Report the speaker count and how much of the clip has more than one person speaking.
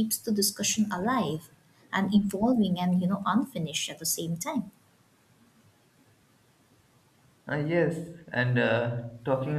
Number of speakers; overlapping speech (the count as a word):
two, no overlap